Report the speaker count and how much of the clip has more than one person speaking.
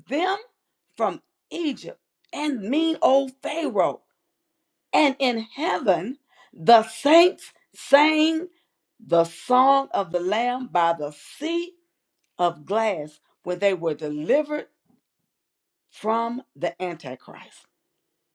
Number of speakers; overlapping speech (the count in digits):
1, no overlap